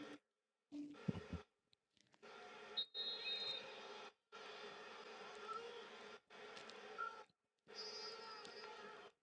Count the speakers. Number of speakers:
0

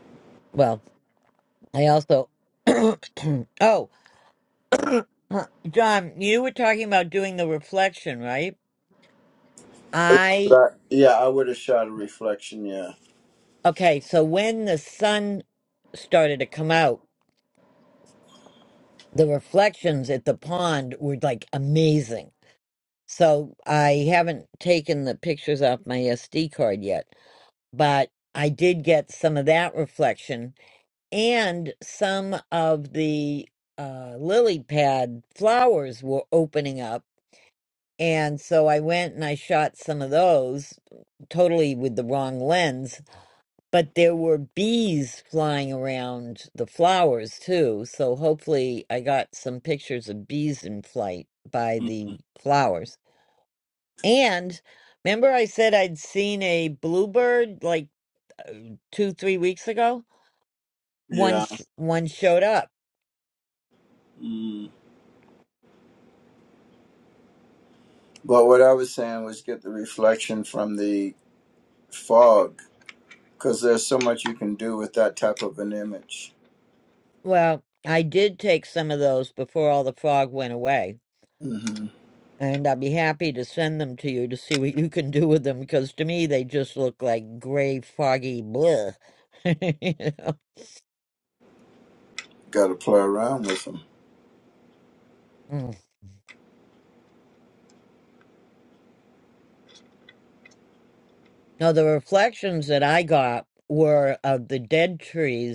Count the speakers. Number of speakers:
2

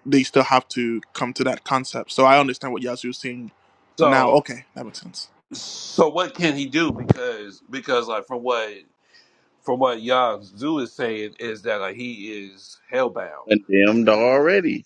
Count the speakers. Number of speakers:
3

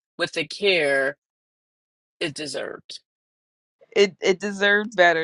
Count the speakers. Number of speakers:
2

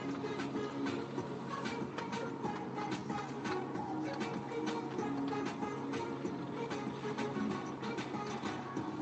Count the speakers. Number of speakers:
0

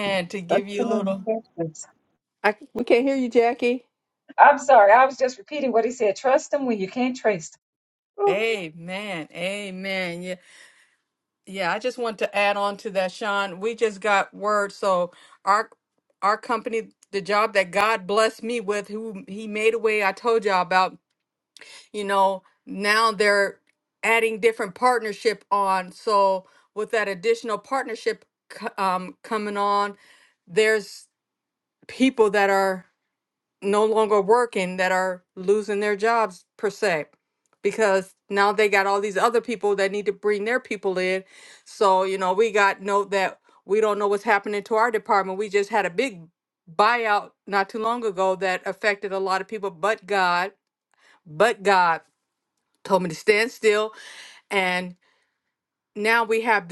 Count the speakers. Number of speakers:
2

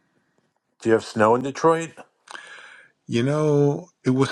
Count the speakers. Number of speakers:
2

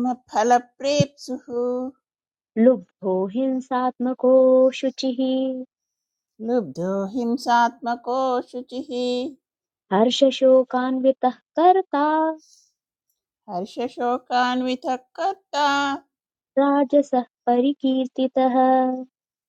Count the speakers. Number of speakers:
2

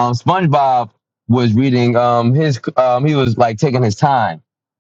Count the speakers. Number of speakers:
1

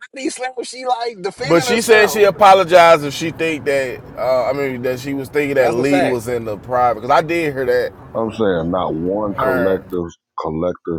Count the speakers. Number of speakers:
3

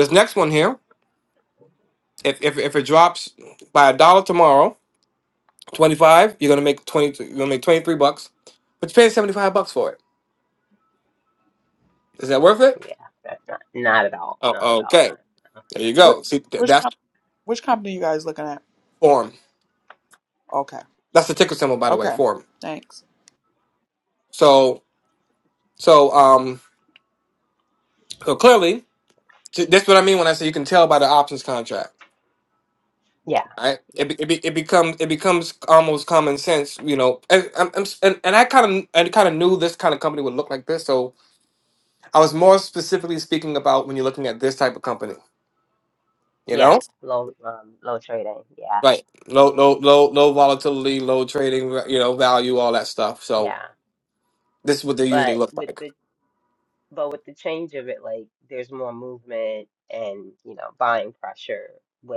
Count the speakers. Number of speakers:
3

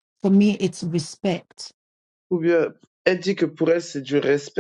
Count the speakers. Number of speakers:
2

